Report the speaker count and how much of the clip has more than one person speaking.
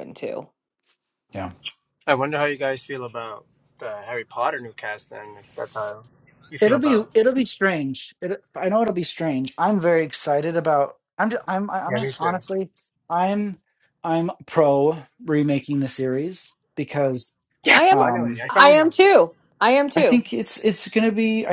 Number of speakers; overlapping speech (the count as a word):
three, about 11%